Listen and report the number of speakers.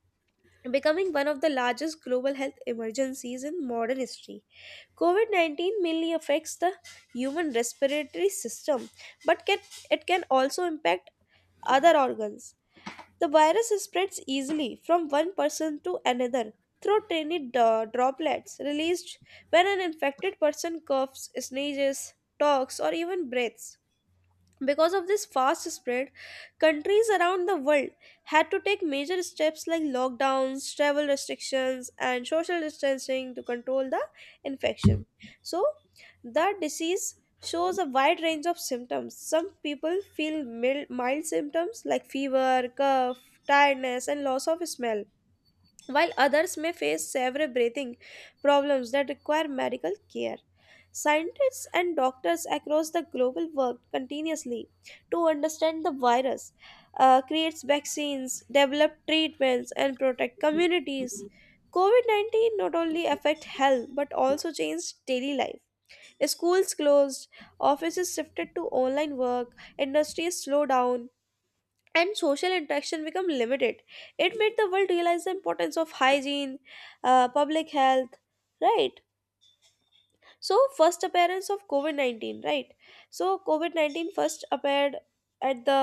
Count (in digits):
1